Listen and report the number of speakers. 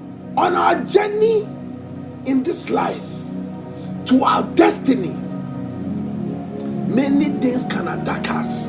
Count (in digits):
1